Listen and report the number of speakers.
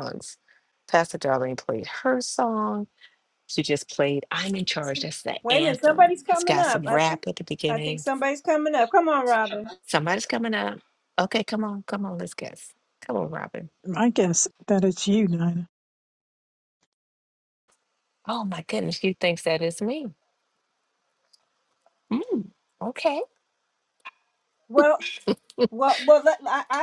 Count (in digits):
3